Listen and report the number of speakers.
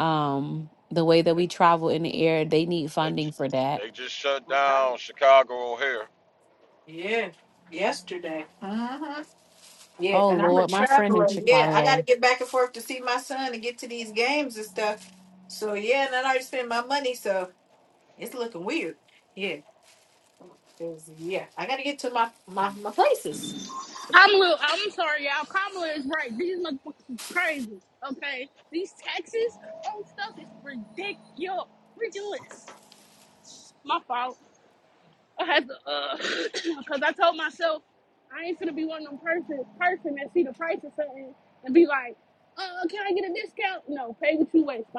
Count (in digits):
4